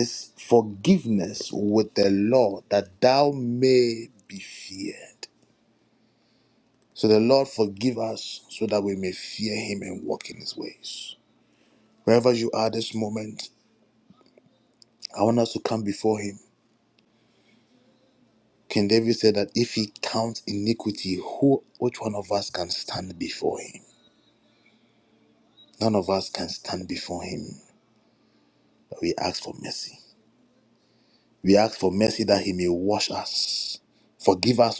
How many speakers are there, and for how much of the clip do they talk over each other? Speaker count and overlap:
1, no overlap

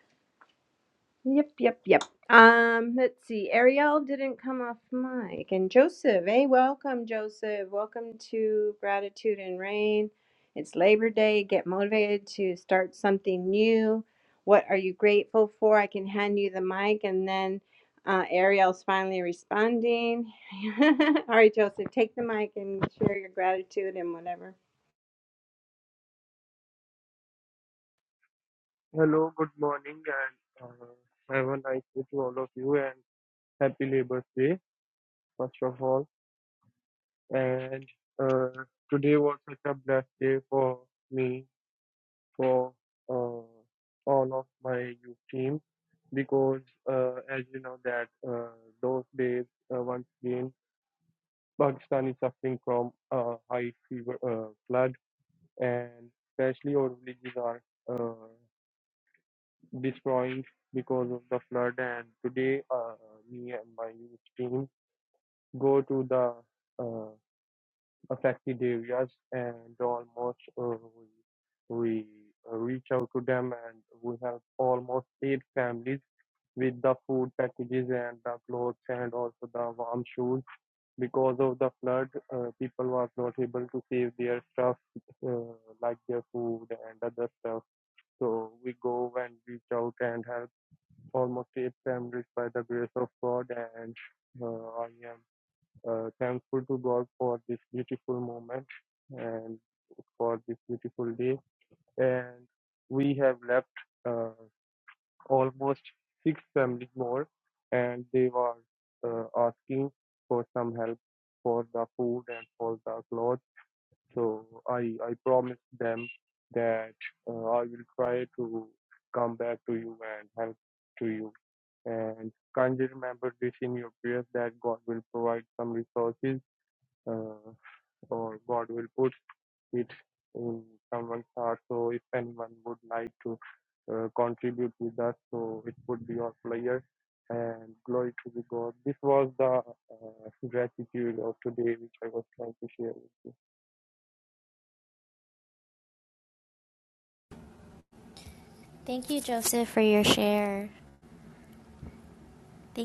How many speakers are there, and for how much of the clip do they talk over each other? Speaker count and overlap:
3, no overlap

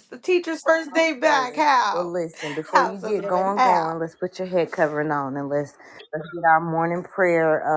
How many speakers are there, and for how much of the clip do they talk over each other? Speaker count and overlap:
2, about 27%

